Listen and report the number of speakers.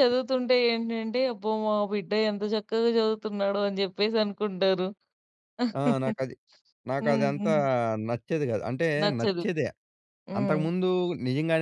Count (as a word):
two